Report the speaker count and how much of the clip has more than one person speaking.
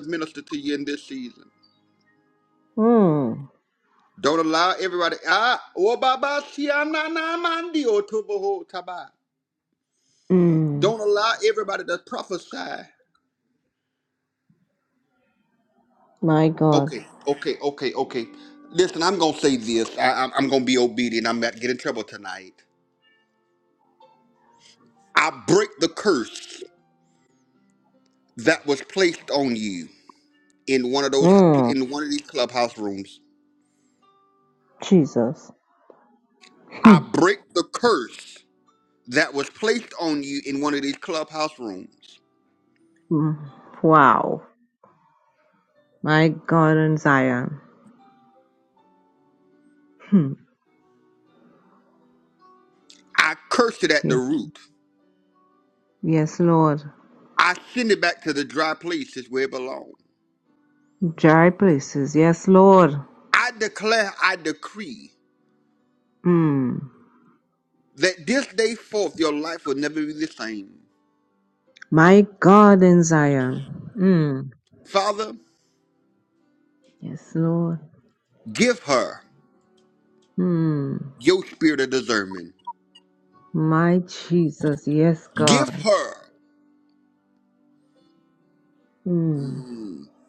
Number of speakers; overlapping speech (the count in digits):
2, about 2%